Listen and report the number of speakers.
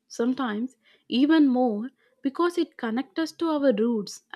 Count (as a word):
one